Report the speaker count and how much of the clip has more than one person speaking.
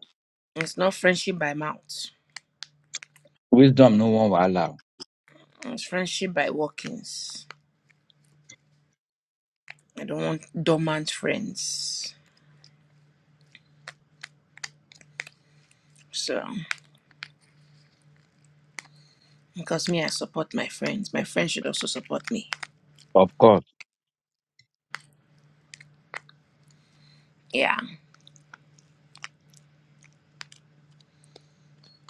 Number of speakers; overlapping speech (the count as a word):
two, no overlap